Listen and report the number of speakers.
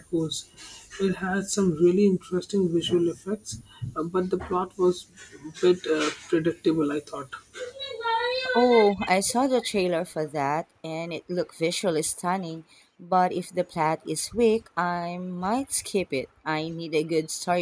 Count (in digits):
2